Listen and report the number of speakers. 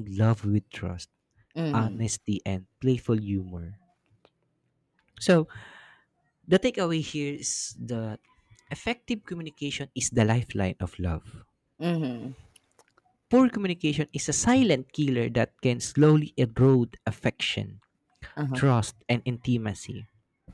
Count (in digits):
2